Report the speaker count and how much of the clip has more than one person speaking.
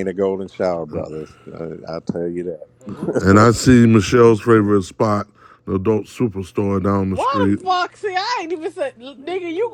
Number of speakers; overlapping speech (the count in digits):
3, about 11%